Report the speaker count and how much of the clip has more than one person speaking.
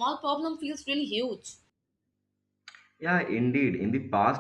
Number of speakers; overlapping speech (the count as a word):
two, no overlap